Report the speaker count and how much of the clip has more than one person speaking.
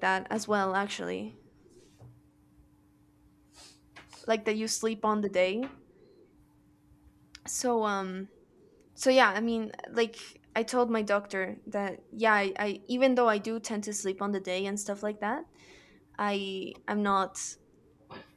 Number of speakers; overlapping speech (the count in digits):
1, no overlap